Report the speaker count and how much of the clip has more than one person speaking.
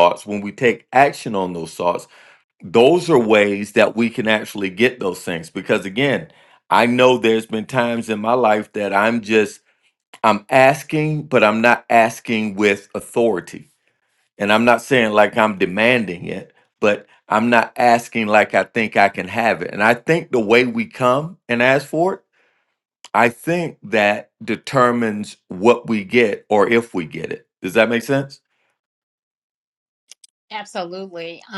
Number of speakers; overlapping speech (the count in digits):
2, no overlap